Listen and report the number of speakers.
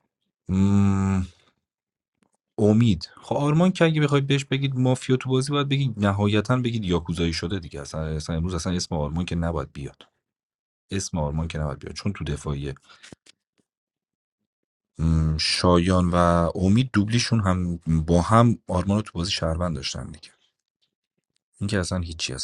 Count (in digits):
1